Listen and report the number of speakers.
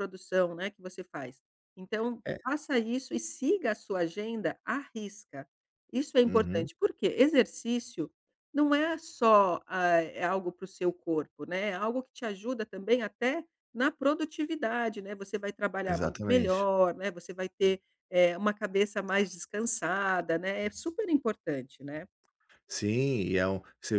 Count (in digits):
2